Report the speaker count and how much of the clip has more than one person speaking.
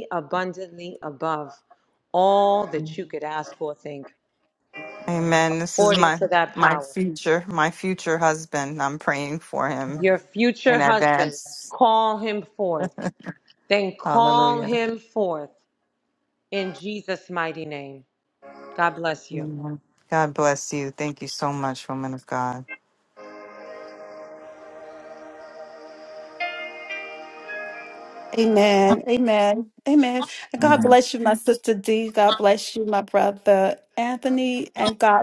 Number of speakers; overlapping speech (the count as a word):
three, about 8%